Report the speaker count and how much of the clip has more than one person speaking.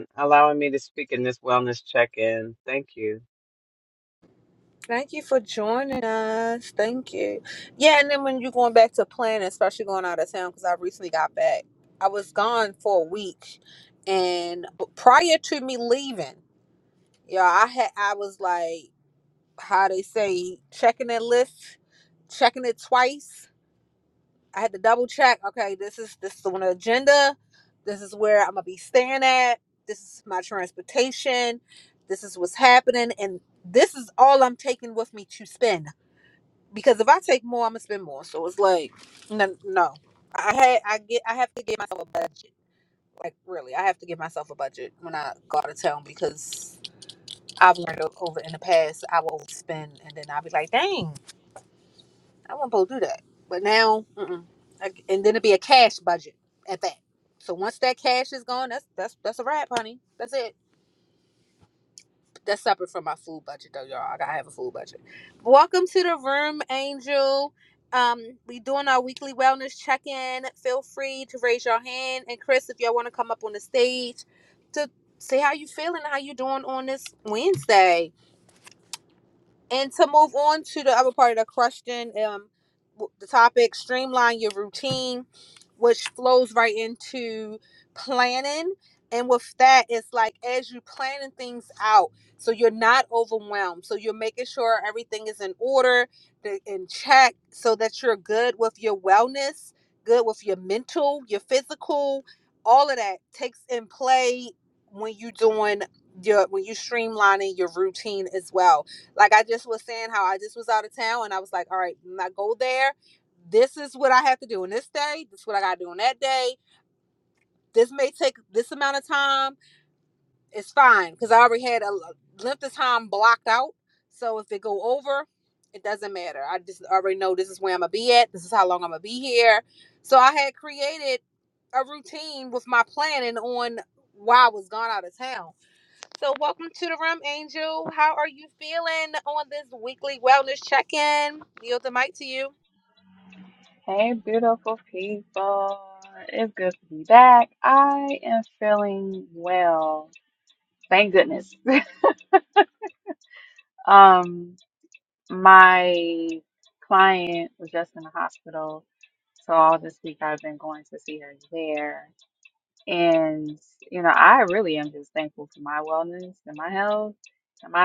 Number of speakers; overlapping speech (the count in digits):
3, no overlap